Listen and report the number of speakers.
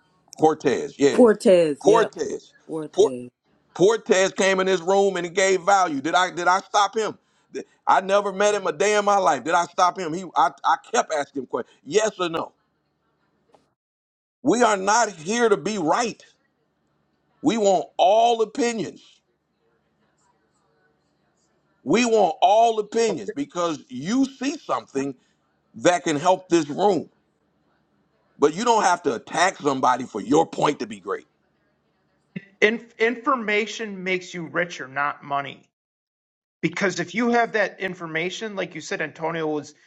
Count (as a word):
three